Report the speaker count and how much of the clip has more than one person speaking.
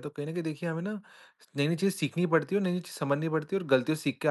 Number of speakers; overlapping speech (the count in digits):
1, no overlap